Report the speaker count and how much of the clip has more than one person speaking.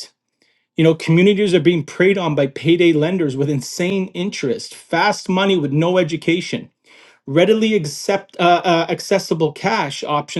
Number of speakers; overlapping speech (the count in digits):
1, no overlap